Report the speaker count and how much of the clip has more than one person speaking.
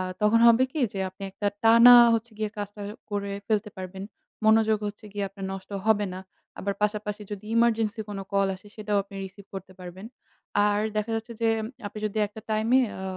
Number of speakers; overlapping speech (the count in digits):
1, no overlap